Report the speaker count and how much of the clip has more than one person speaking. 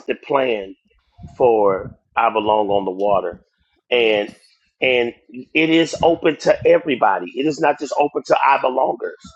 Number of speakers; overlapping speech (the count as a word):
one, no overlap